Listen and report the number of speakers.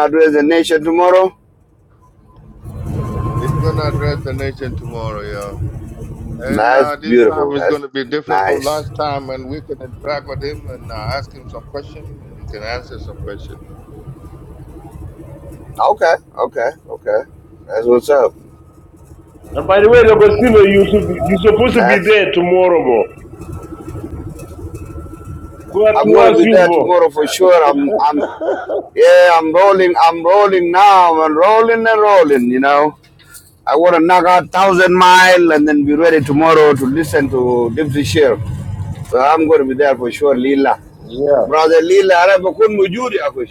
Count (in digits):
3